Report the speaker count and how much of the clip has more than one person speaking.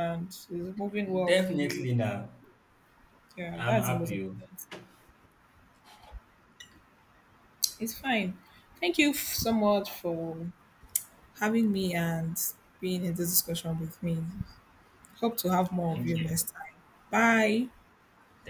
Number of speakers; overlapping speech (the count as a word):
two, about 10%